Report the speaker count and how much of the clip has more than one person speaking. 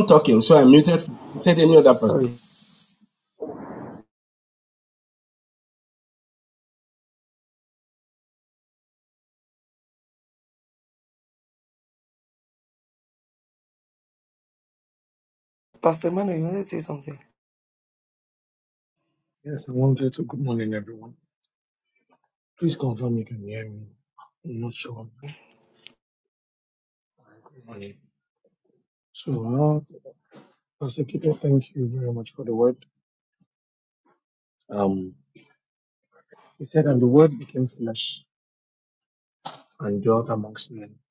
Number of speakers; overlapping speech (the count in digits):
3, under 1%